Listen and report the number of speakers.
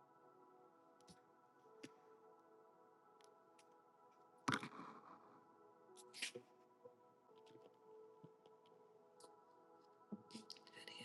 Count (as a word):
zero